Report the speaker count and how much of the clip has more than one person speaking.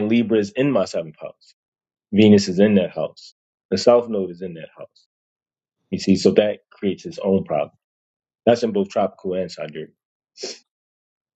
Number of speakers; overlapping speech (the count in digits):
1, no overlap